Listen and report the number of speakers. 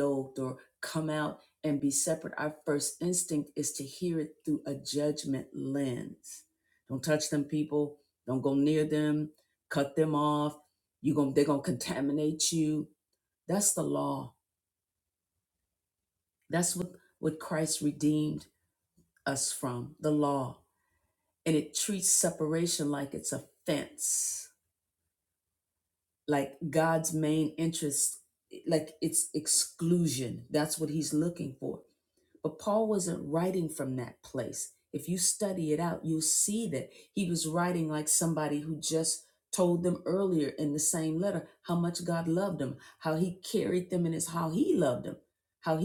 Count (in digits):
1